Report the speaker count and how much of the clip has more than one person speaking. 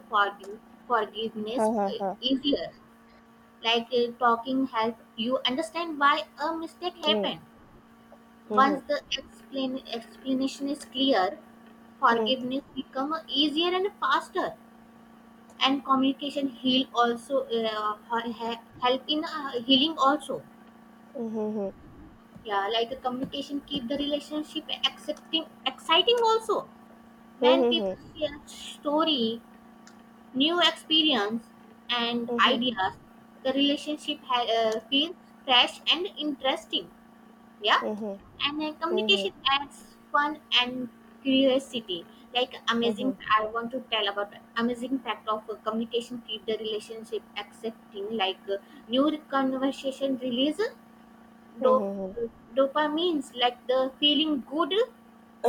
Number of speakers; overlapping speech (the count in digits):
2, about 6%